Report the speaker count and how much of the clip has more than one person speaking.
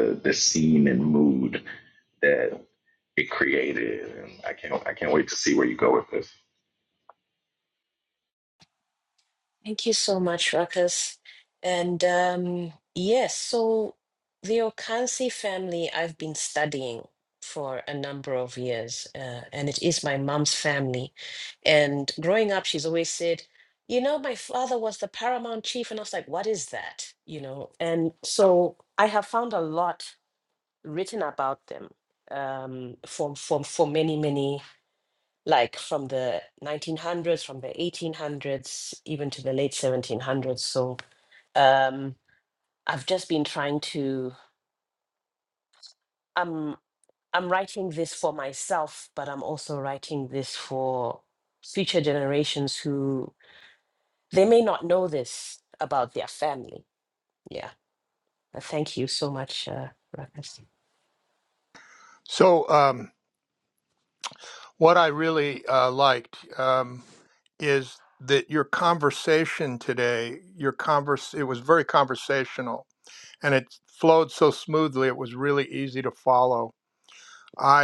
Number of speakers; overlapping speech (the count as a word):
three, no overlap